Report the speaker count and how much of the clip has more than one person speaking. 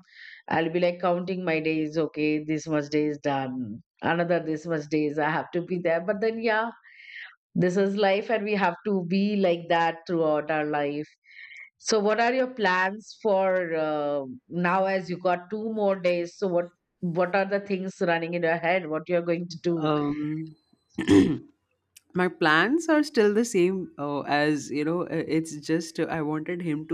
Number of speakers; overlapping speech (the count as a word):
two, under 1%